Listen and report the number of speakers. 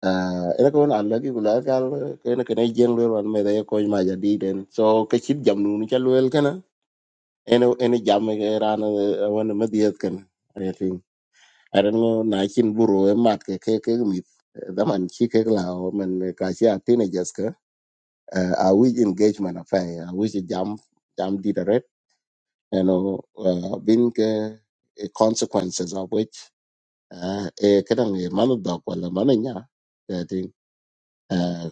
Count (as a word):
one